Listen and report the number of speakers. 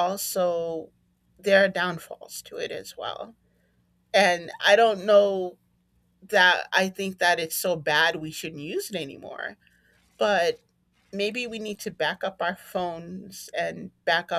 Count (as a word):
one